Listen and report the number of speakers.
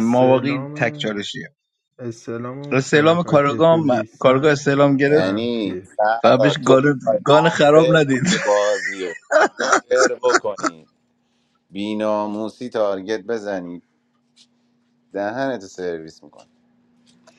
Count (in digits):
3